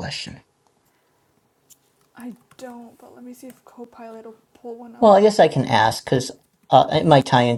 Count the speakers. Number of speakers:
two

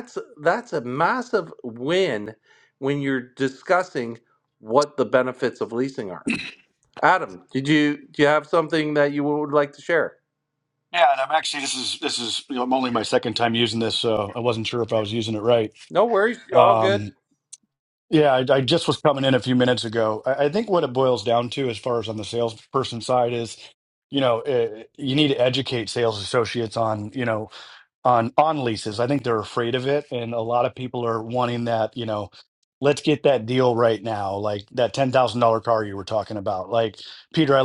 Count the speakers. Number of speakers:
two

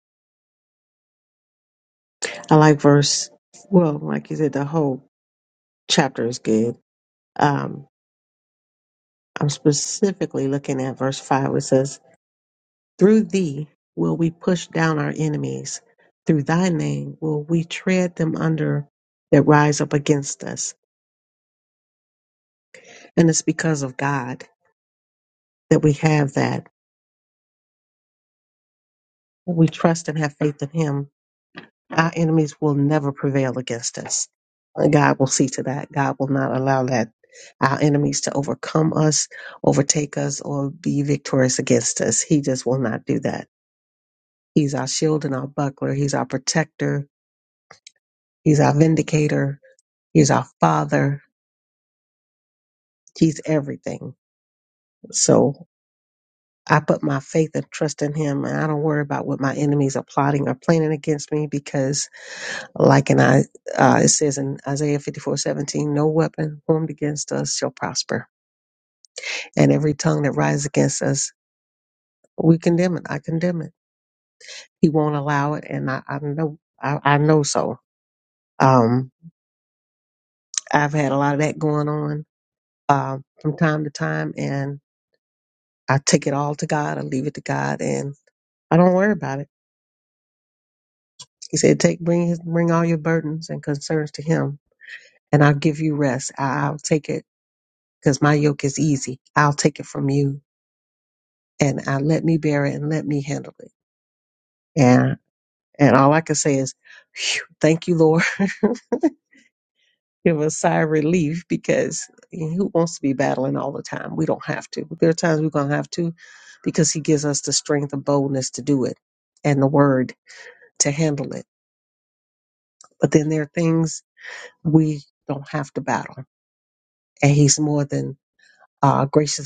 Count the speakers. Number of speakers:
one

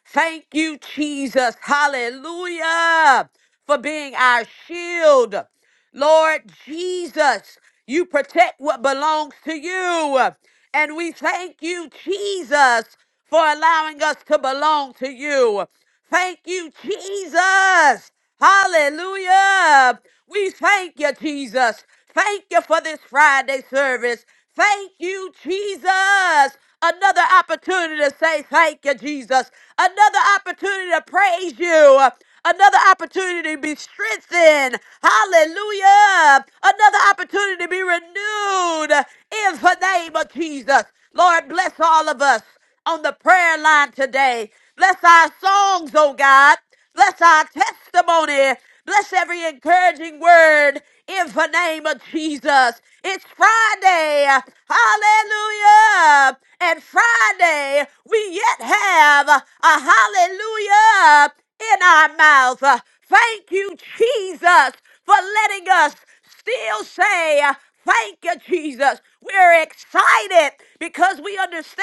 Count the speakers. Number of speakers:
one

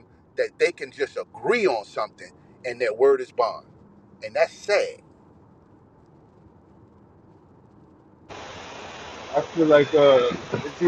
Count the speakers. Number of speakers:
two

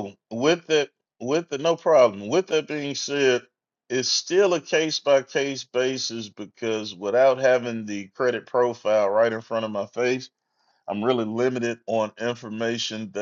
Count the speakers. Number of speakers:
one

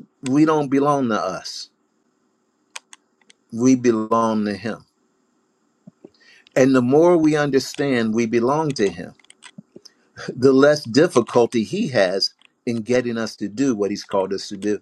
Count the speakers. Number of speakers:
one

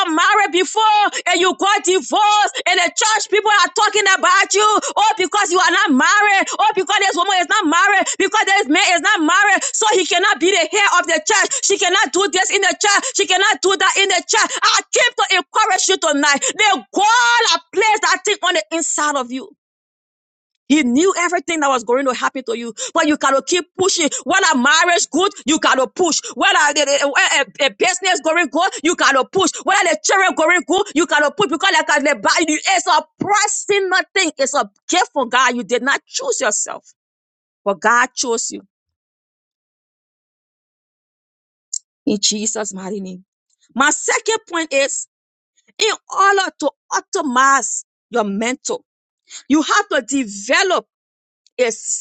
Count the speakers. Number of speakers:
one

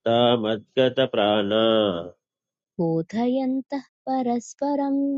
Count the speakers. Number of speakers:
two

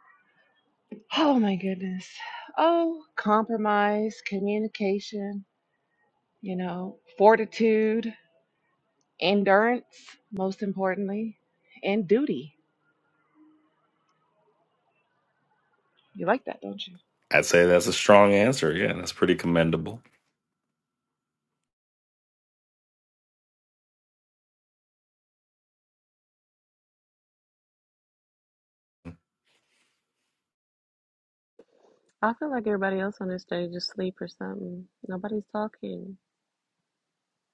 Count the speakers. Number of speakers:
three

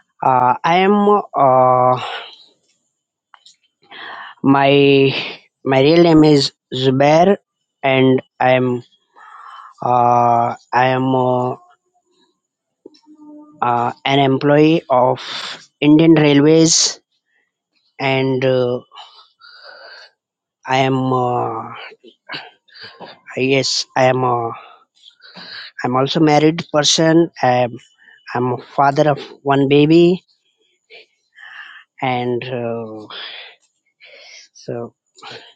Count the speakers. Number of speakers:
one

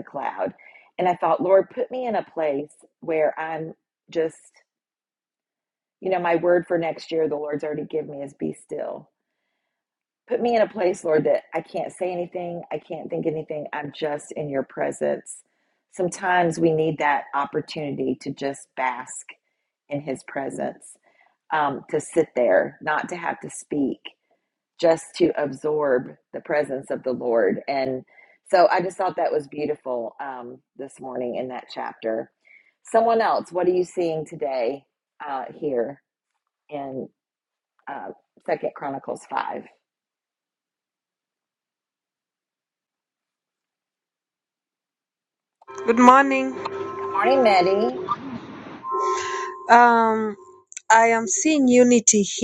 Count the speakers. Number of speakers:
two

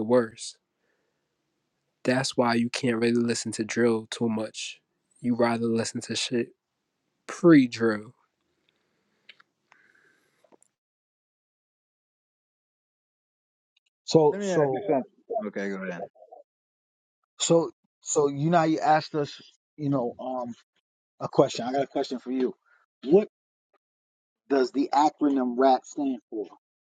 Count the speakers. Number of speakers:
three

